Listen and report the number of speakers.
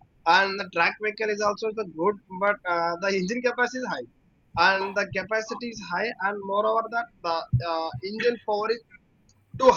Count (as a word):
one